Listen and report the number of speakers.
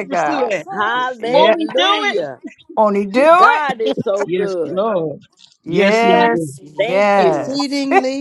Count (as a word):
four